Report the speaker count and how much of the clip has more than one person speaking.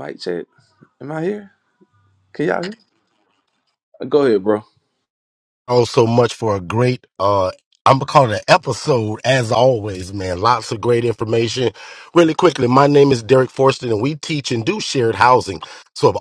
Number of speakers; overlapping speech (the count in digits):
2, no overlap